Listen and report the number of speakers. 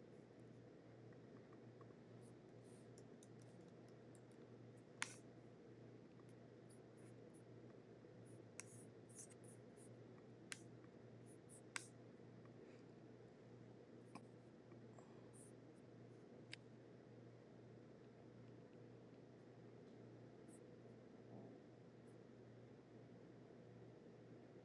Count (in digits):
0